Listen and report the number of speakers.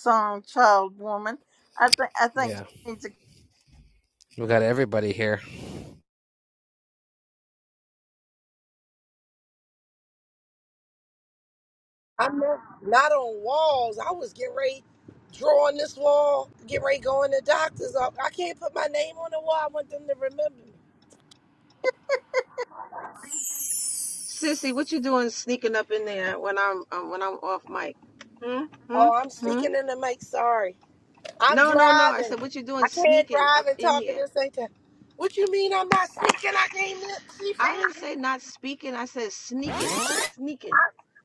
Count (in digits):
4